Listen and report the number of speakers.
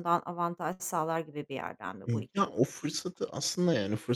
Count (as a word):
two